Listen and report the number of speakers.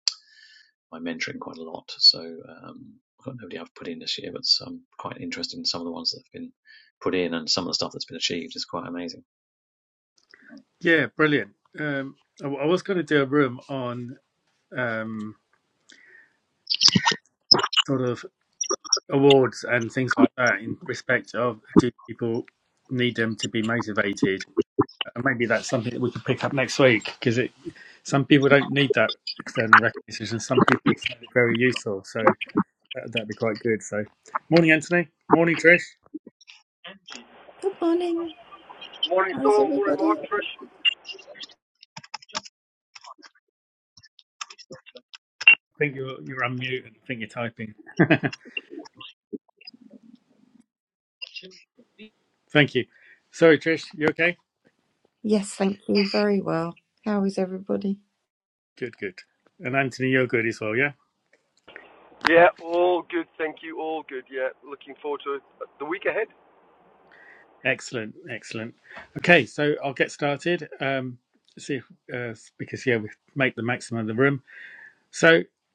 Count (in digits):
4